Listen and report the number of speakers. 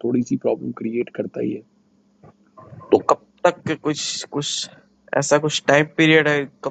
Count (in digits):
2